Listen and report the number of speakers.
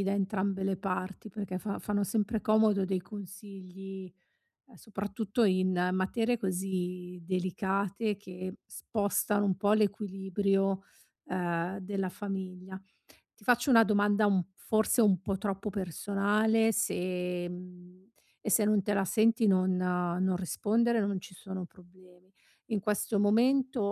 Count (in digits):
1